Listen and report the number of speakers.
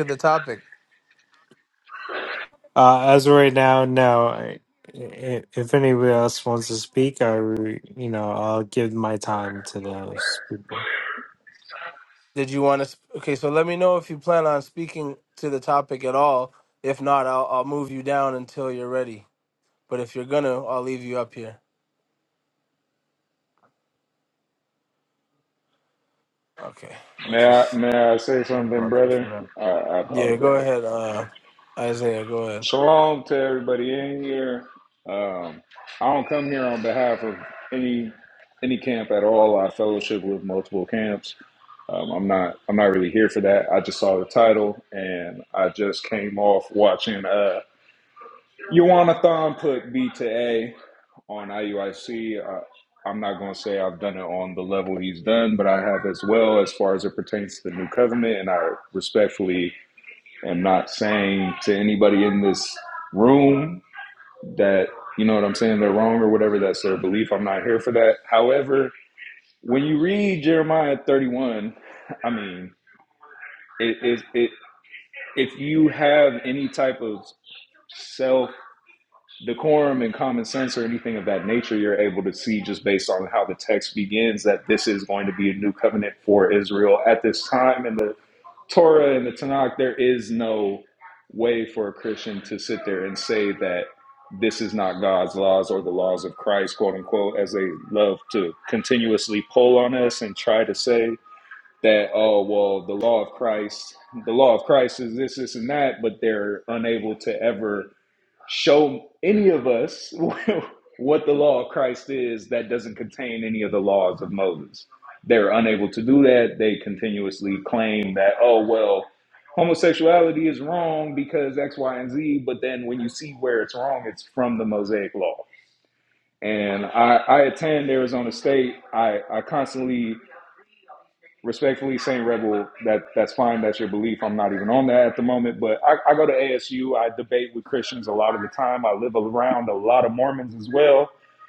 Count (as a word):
three